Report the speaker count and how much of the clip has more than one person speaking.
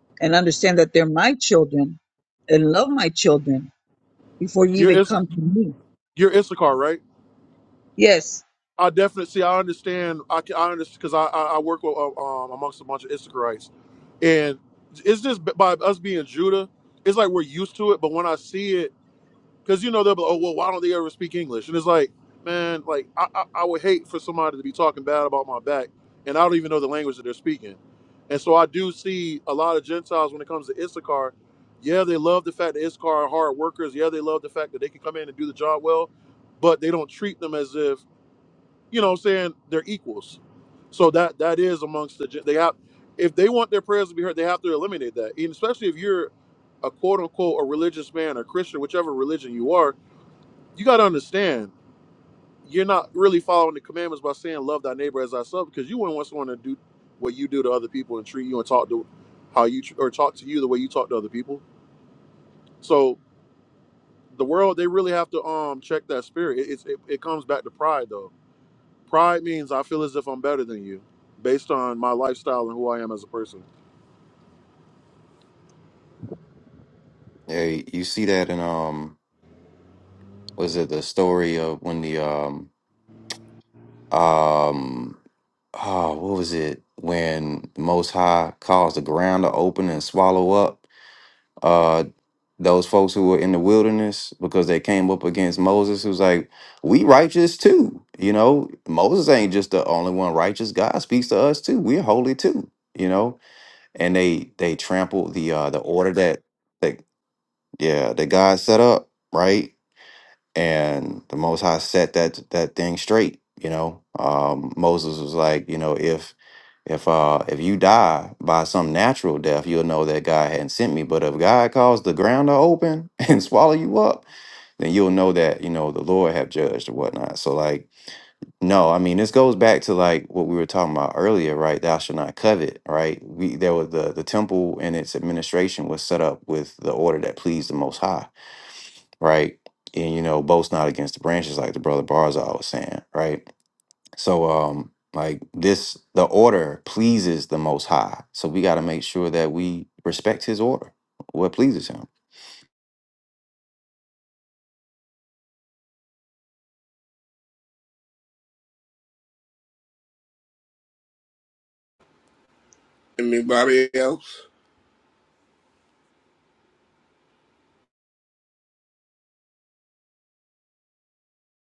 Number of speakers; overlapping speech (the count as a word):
four, under 1%